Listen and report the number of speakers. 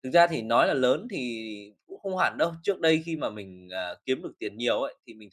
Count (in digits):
1